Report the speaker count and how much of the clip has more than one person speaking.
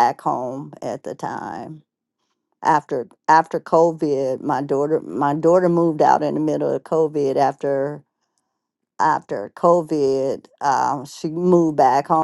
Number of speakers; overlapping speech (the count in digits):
1, no overlap